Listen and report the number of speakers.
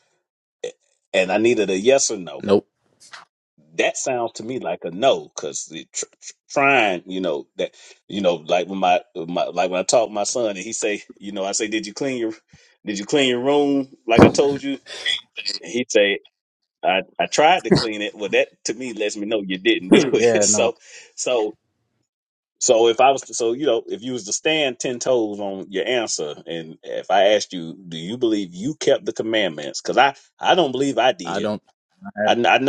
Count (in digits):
2